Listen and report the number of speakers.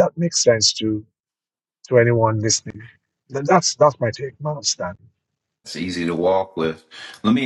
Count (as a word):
two